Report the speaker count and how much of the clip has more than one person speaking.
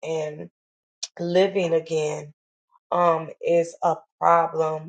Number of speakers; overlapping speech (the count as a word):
one, no overlap